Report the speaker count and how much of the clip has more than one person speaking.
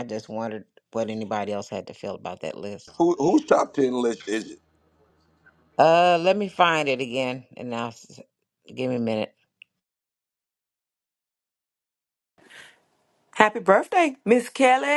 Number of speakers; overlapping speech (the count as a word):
three, no overlap